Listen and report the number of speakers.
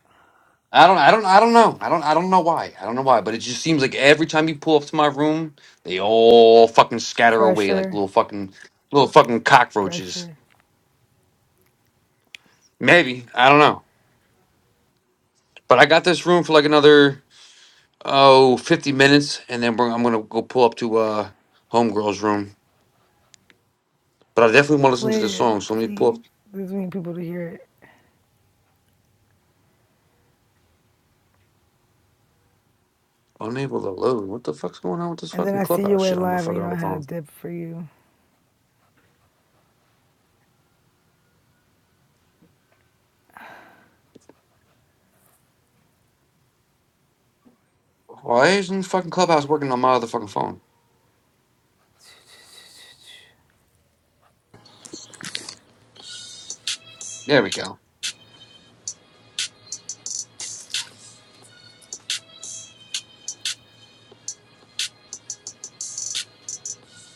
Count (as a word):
two